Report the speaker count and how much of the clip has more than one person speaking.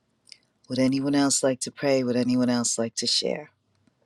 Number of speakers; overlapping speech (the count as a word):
one, no overlap